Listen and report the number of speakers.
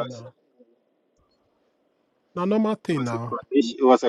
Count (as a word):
two